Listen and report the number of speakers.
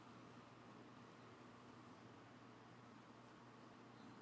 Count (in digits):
0